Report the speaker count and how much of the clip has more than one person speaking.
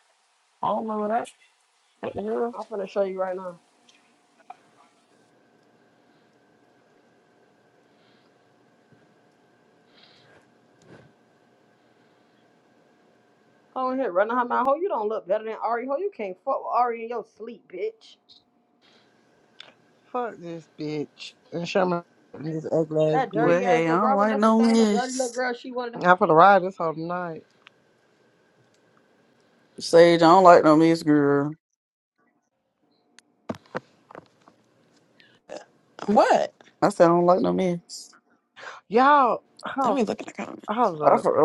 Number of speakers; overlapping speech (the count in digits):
5, about 6%